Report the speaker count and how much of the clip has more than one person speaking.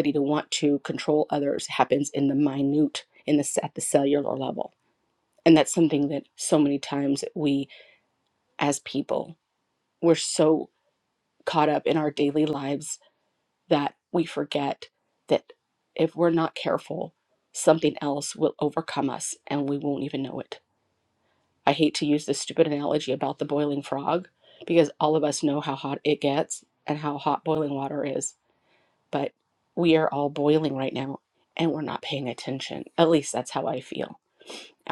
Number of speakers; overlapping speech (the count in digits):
1, no overlap